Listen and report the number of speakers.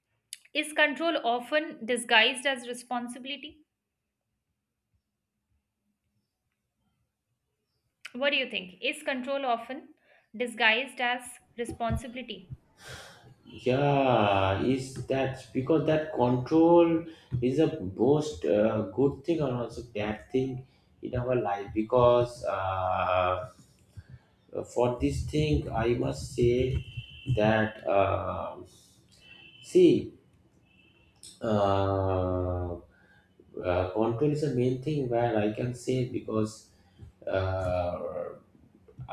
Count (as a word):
two